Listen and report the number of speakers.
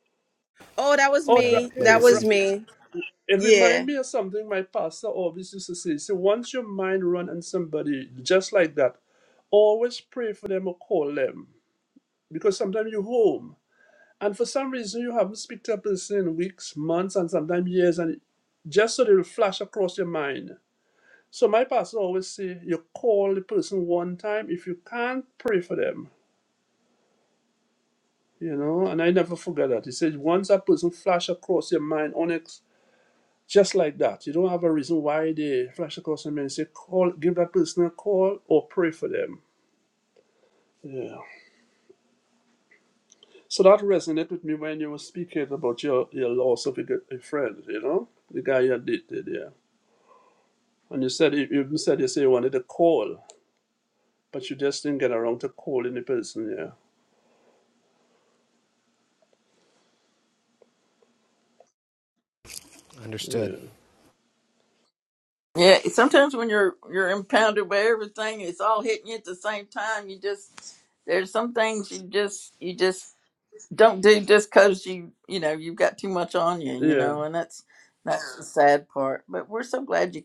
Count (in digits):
4